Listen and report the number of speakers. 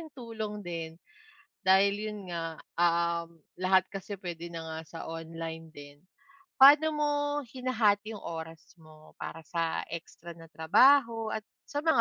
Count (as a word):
one